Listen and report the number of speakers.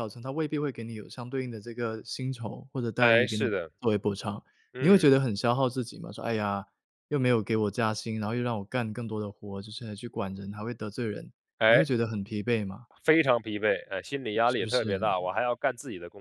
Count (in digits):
2